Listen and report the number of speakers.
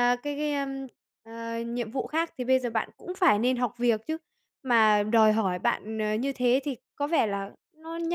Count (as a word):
one